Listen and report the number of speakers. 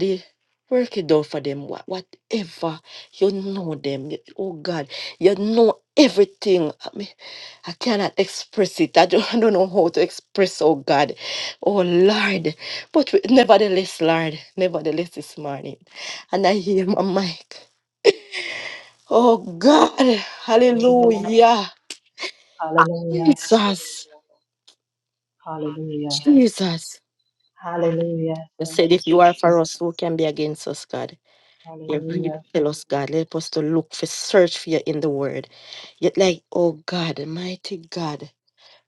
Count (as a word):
two